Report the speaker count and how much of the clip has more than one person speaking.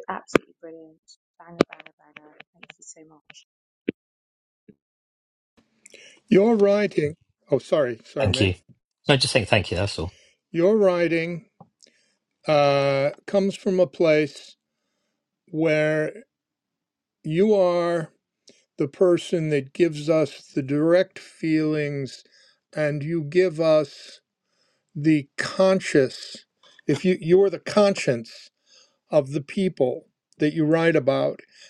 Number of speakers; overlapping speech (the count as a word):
three, about 1%